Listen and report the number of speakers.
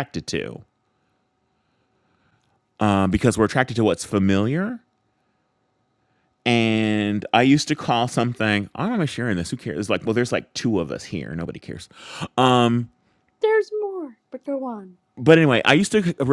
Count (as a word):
two